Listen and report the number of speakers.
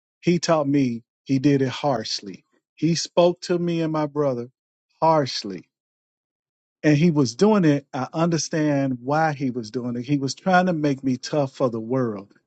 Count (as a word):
one